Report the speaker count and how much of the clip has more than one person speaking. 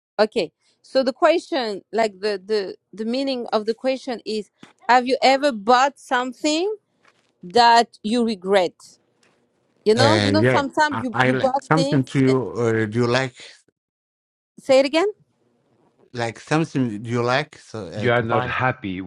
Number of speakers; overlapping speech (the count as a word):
three, about 14%